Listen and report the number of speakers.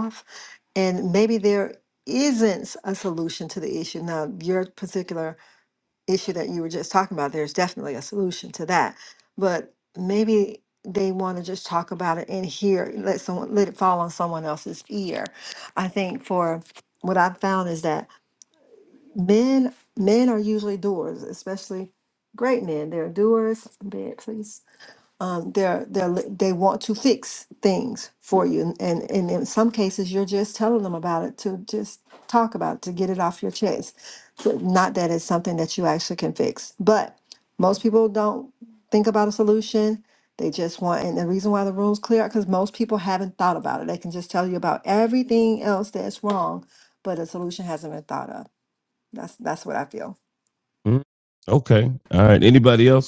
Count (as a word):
two